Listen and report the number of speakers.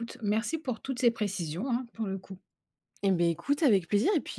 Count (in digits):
2